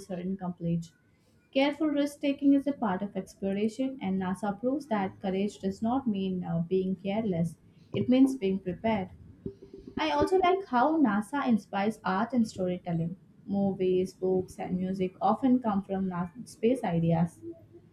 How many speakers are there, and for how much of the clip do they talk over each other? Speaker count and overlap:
one, no overlap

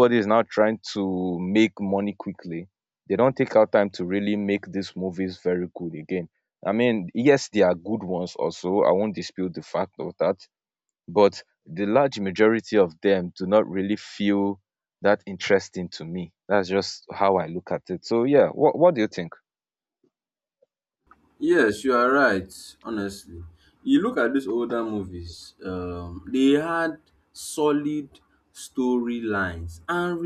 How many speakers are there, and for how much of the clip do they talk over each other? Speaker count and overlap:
two, no overlap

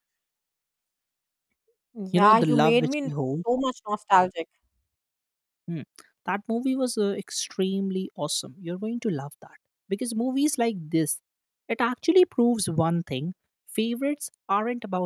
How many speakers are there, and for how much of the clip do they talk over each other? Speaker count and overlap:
two, about 7%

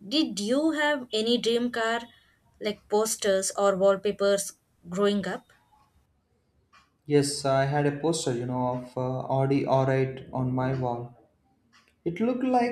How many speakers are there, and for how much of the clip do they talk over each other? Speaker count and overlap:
two, no overlap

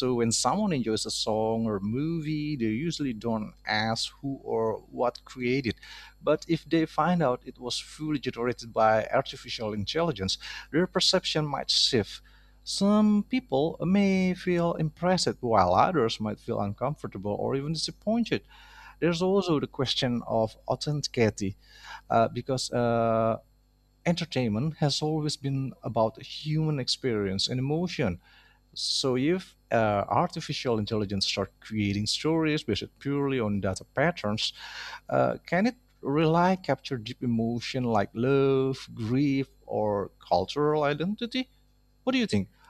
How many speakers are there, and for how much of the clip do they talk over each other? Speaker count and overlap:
one, no overlap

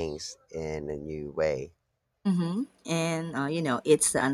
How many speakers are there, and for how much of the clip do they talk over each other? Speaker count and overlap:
two, no overlap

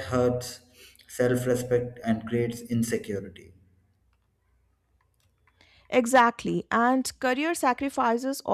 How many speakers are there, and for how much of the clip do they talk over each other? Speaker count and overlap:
two, no overlap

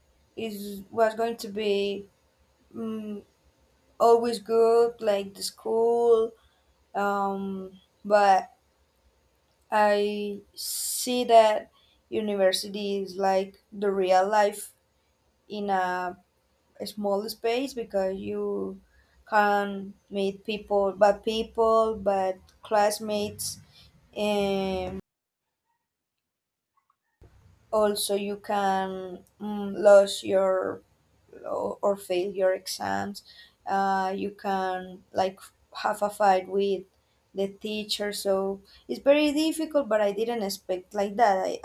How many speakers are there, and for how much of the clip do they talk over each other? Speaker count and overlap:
one, no overlap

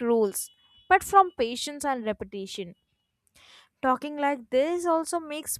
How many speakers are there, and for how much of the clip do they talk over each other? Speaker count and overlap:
one, no overlap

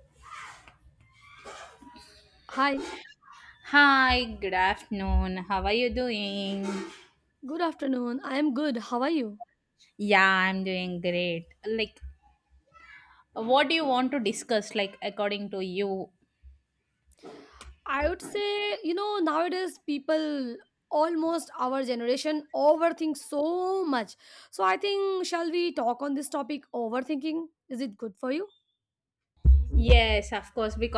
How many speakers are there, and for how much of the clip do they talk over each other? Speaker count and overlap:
two, no overlap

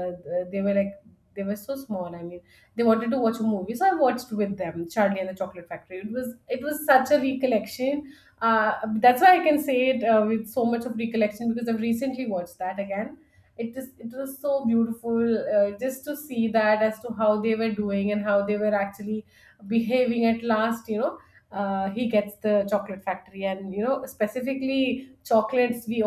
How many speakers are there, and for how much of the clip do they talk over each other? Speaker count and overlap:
one, no overlap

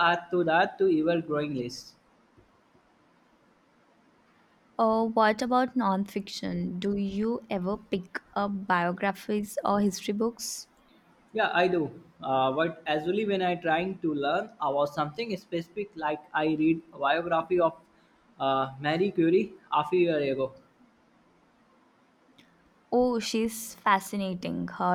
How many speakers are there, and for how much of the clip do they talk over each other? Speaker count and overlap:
two, no overlap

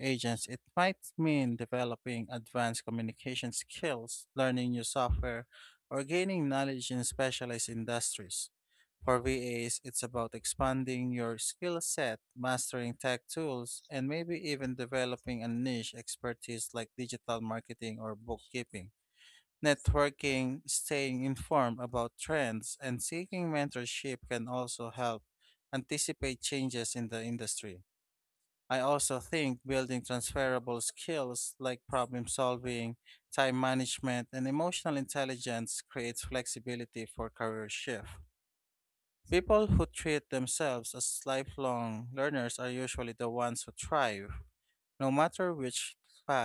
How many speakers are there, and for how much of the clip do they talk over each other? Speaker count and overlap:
one, no overlap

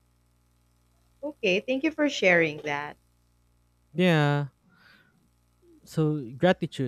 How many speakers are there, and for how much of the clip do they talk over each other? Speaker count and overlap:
two, no overlap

